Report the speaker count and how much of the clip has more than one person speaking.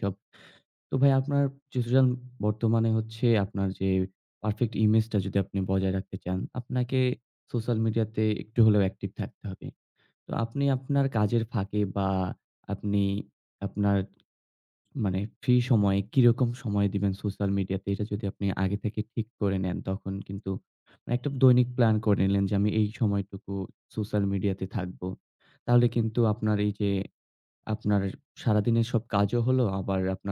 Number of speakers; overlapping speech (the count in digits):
1, no overlap